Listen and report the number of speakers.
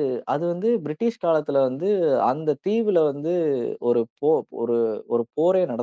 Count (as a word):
one